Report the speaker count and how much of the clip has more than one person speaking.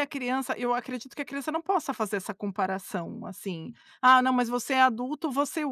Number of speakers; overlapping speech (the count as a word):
one, no overlap